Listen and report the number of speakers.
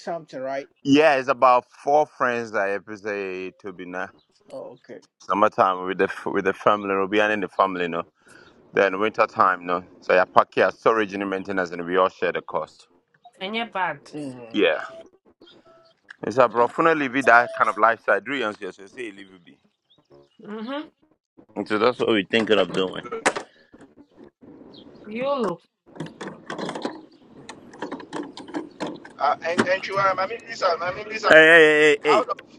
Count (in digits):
4